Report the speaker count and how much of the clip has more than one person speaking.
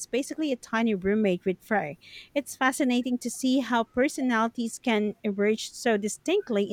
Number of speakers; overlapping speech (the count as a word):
one, no overlap